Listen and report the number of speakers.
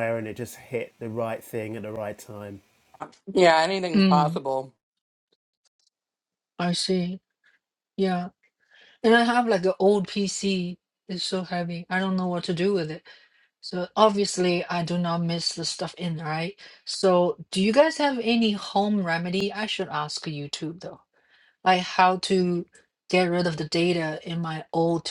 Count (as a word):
three